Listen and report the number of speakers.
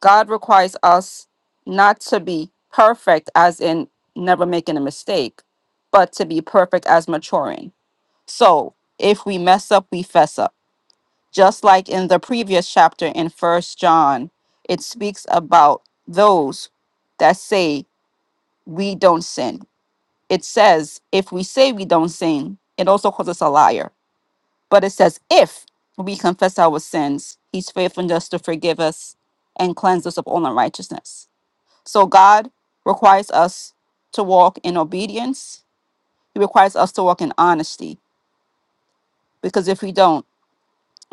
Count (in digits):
1